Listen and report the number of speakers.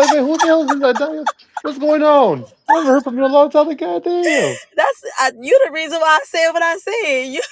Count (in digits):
2